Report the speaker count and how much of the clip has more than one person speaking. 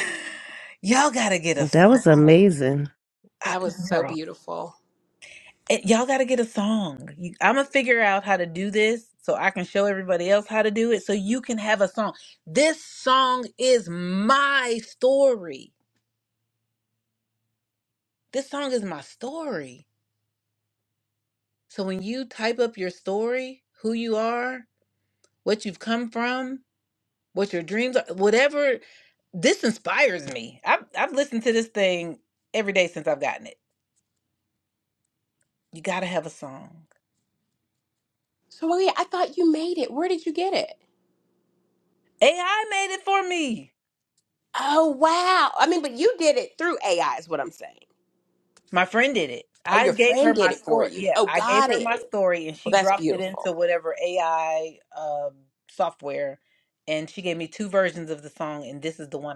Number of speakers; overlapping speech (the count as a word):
three, about 8%